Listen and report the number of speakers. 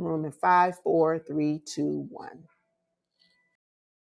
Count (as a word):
one